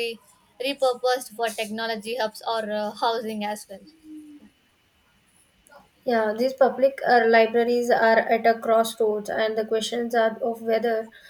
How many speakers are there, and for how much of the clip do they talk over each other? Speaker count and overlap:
2, no overlap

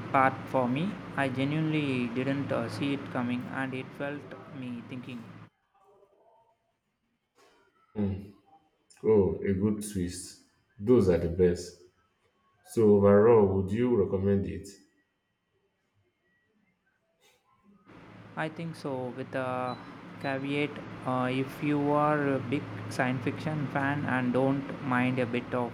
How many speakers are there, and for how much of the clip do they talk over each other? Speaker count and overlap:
2, no overlap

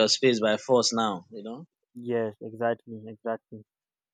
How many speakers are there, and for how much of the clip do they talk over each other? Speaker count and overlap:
2, no overlap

